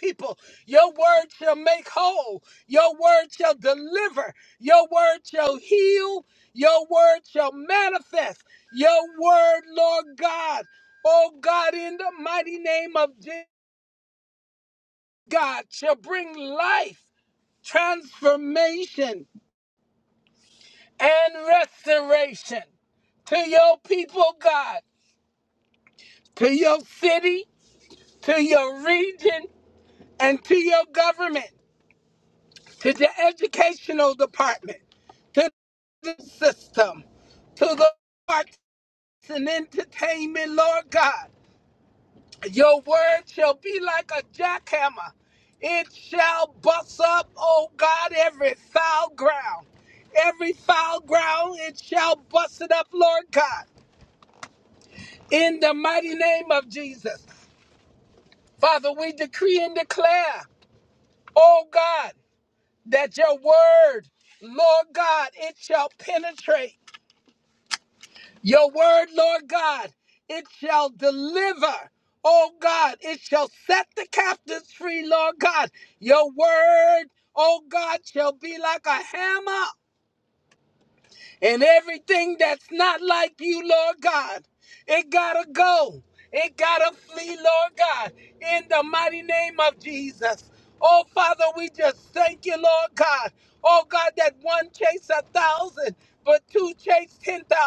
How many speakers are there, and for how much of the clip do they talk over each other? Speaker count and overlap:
1, no overlap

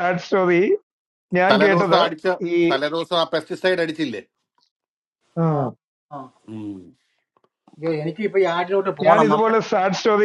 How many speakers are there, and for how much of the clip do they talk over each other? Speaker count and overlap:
3, about 12%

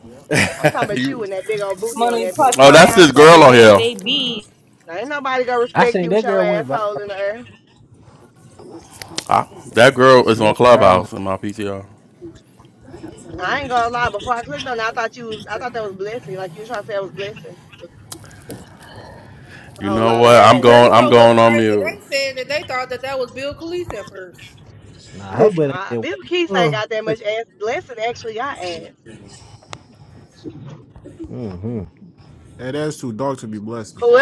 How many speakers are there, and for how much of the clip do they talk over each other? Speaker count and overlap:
6, about 19%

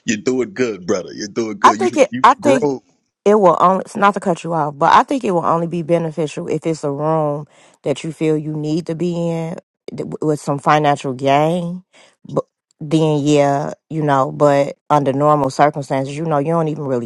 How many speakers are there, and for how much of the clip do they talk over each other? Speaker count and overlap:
2, about 6%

